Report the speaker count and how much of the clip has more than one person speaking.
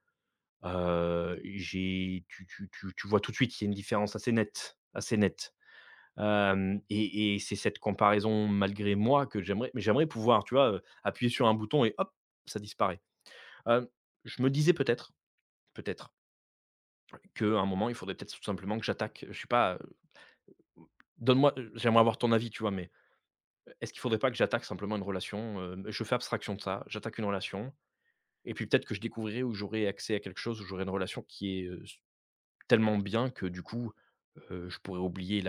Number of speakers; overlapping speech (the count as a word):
one, no overlap